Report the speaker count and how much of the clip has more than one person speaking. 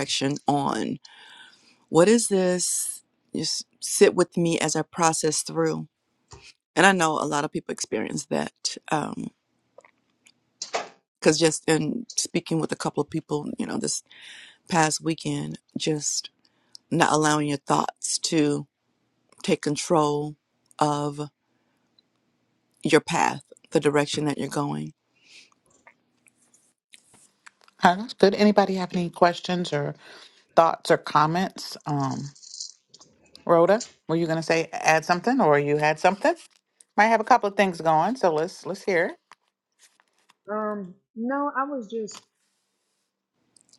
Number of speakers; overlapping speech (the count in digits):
3, no overlap